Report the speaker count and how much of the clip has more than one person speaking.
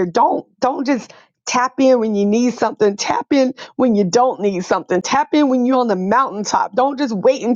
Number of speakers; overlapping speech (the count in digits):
1, no overlap